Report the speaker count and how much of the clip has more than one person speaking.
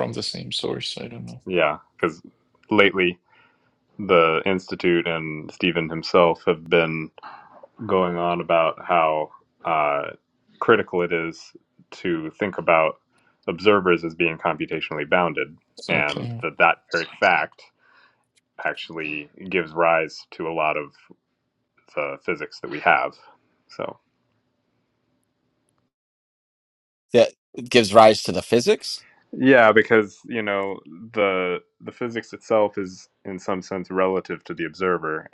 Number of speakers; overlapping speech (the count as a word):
three, about 1%